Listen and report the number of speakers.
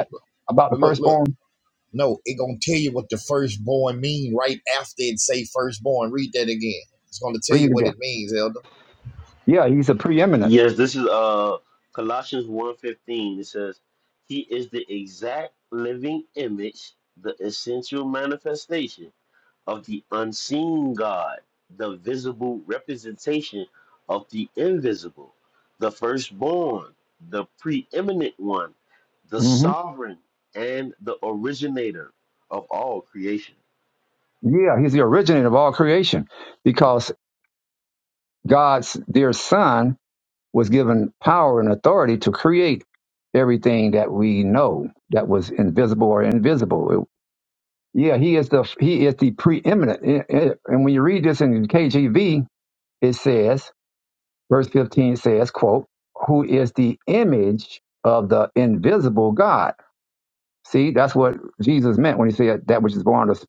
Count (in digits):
3